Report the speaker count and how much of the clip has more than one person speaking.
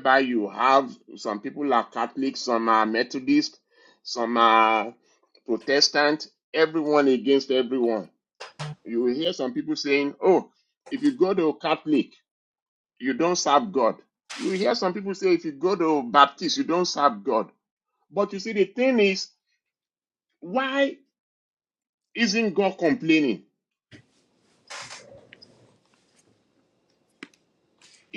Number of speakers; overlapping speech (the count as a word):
one, no overlap